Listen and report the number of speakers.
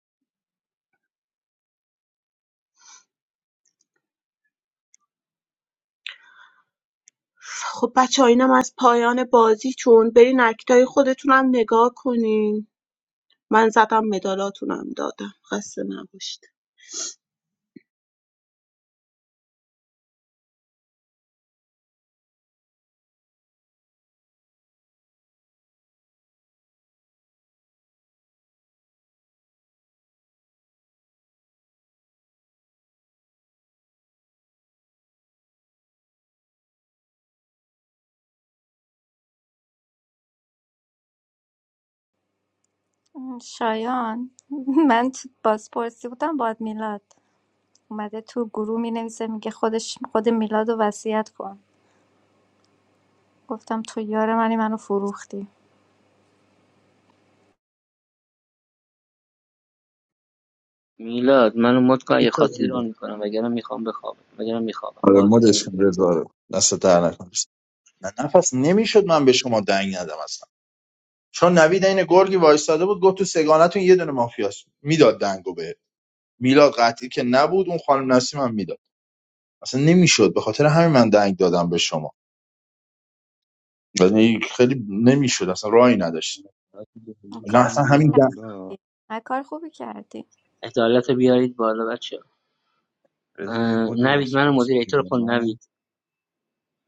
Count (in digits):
5